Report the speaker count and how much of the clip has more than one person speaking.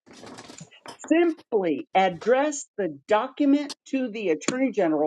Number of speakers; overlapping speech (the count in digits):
1, no overlap